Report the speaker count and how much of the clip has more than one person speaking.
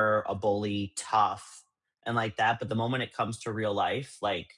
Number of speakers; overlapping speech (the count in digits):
1, no overlap